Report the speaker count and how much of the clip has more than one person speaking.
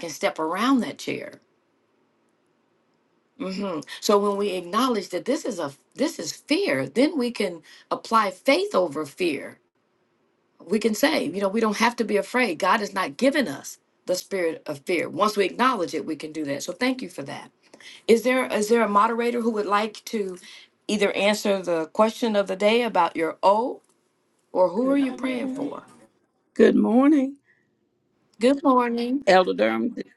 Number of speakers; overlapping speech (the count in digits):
2, about 2%